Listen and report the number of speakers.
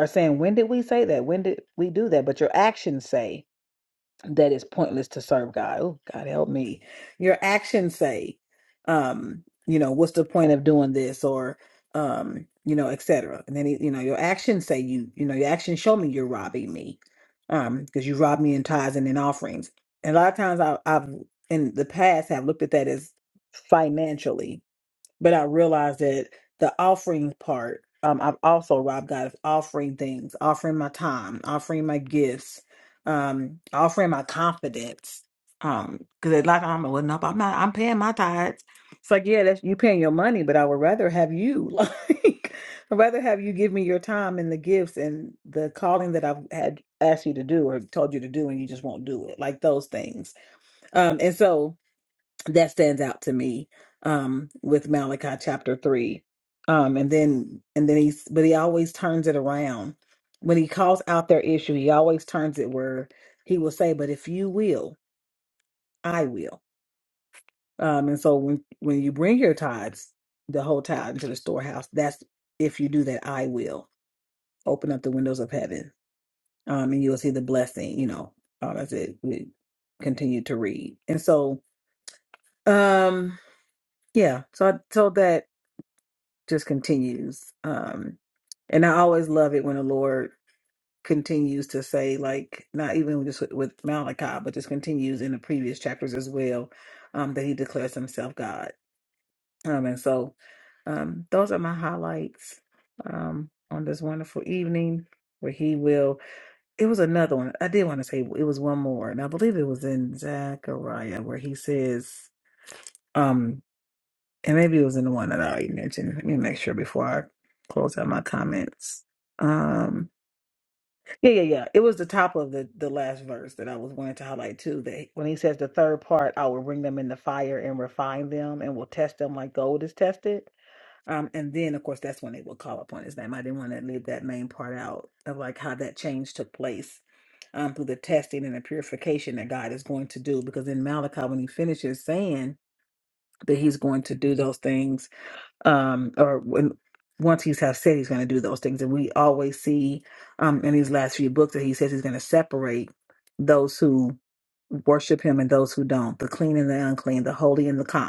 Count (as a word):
one